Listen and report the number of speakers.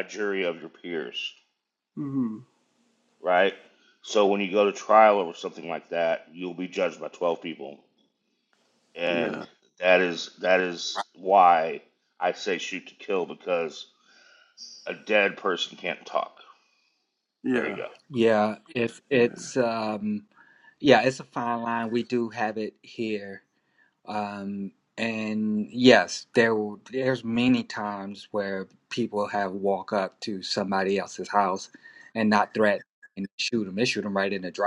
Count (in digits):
3